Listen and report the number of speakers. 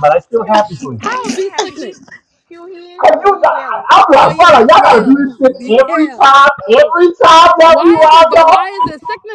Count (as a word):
three